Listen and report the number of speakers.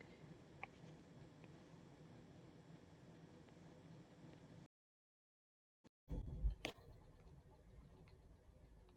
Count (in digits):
0